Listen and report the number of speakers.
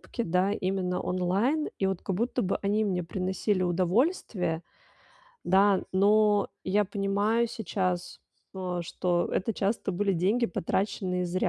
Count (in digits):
1